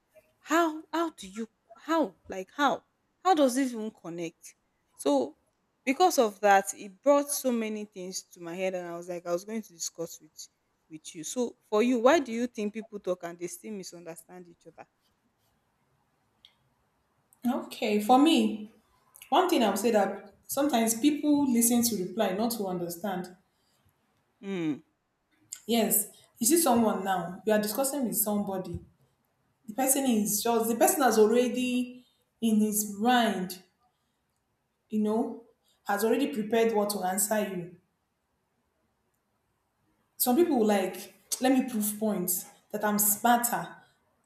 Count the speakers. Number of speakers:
2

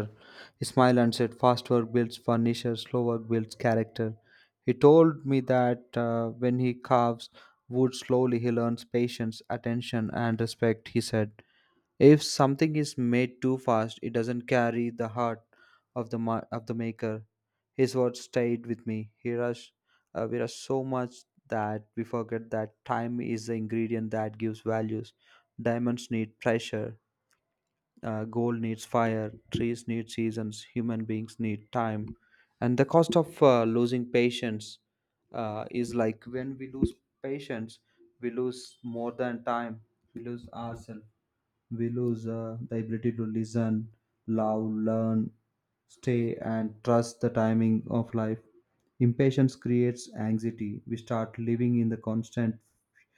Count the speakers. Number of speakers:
1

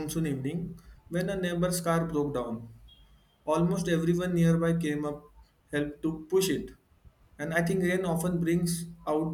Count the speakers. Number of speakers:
1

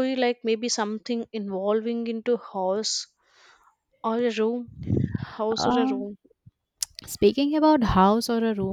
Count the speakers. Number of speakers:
2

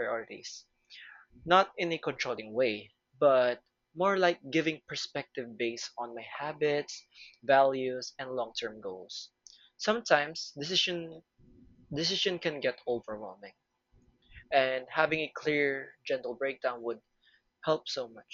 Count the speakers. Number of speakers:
1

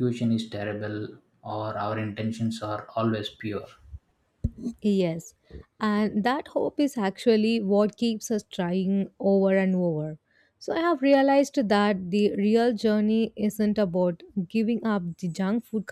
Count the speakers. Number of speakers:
2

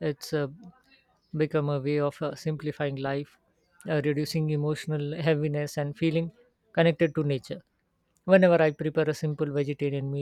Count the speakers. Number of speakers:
1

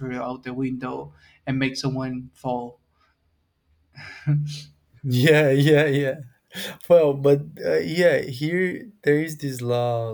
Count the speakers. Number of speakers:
2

